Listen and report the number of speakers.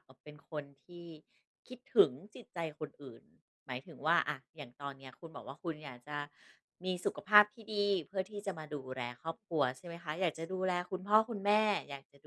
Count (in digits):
1